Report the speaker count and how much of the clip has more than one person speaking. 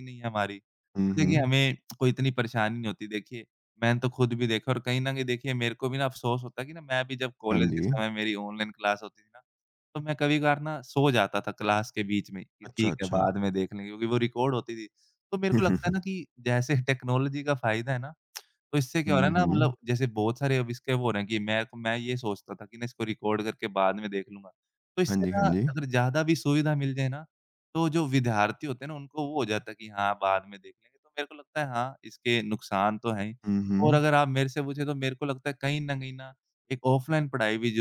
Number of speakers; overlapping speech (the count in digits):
2, about 7%